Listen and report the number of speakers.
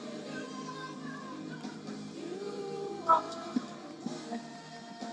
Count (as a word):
zero